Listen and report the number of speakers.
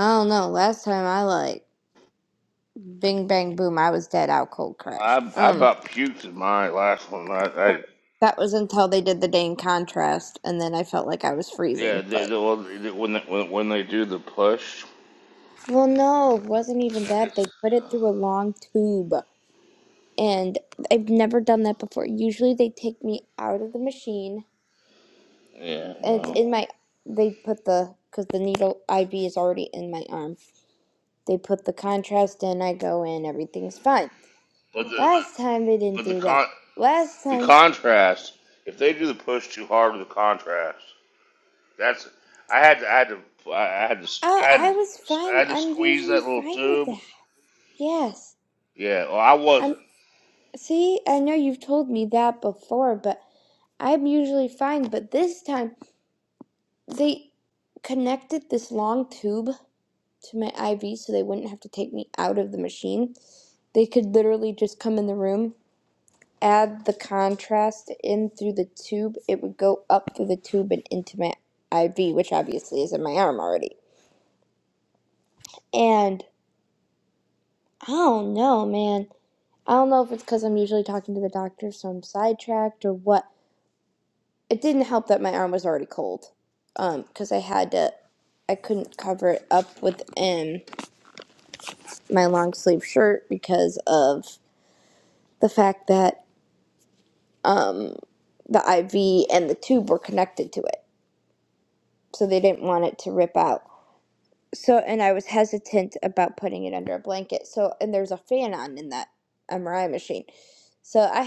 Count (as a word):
two